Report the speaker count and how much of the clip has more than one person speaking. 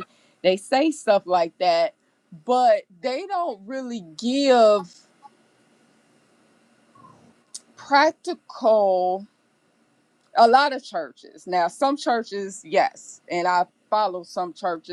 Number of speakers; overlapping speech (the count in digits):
1, no overlap